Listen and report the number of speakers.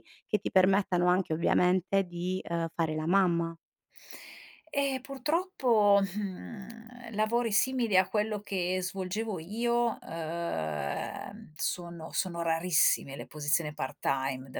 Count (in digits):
2